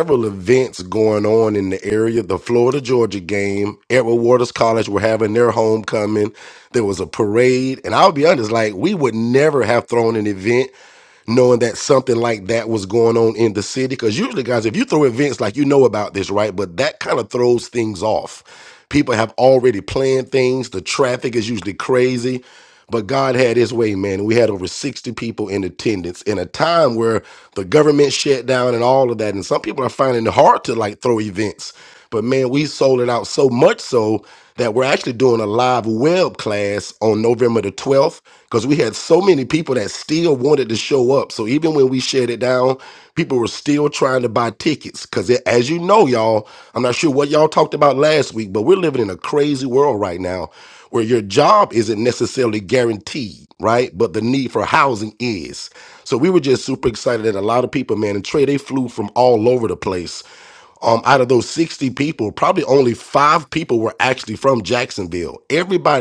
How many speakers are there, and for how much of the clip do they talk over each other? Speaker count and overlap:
1, no overlap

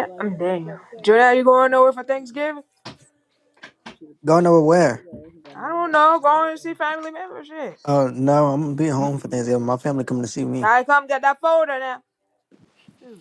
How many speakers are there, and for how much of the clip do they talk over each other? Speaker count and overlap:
2, under 1%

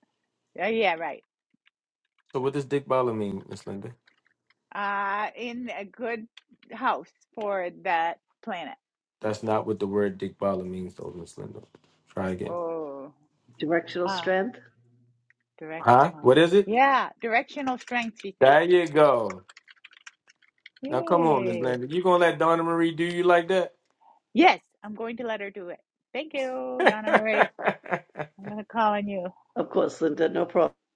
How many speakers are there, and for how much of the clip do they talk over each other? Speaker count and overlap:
3, about 6%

